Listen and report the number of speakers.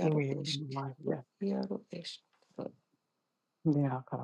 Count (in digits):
2